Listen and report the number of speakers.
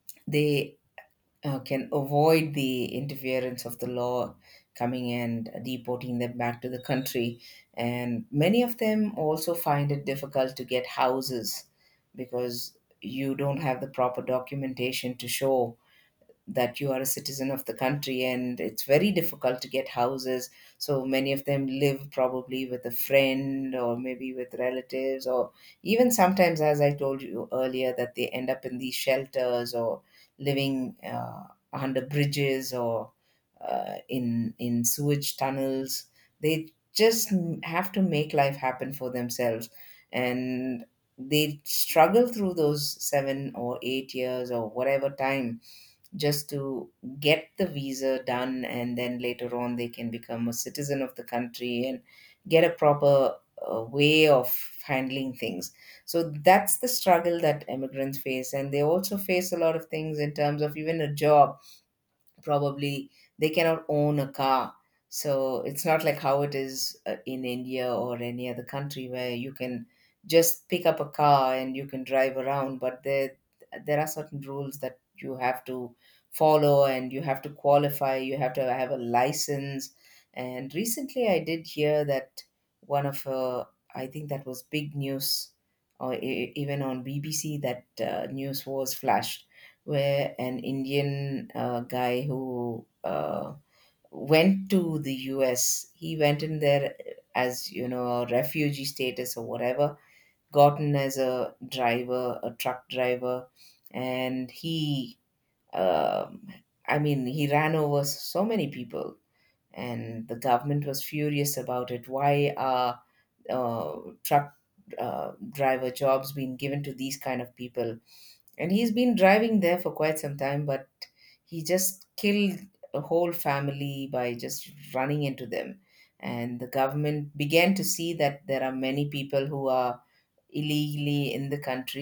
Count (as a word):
one